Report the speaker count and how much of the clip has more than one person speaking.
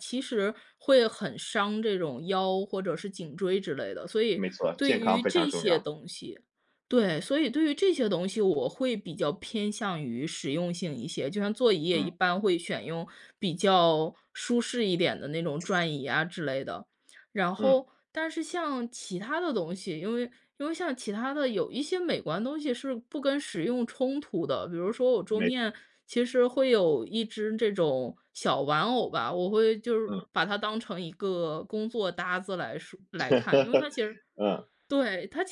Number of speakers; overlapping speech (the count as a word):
two, about 5%